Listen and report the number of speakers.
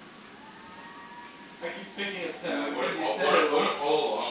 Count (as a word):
two